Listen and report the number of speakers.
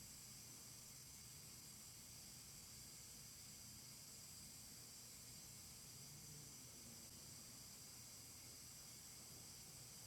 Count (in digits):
0